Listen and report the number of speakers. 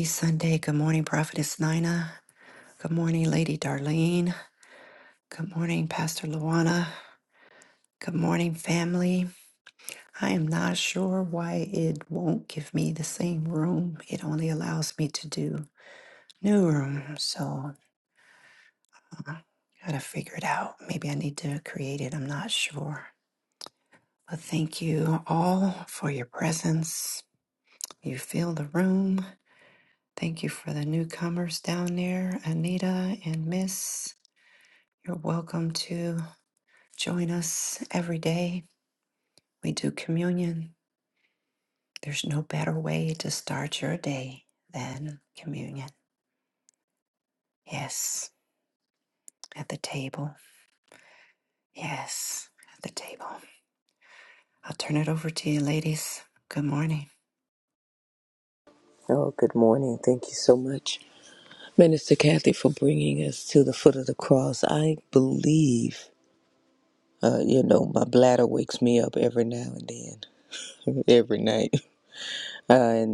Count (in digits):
2